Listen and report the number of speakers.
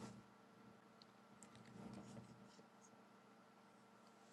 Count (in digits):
0